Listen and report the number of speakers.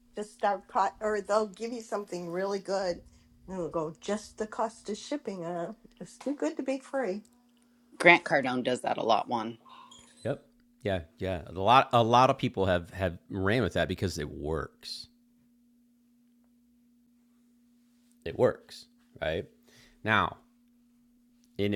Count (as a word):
three